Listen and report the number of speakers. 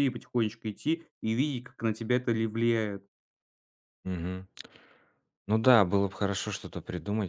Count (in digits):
2